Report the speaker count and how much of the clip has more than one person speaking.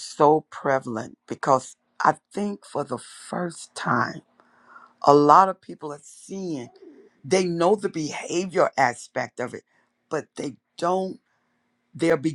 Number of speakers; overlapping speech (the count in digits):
1, no overlap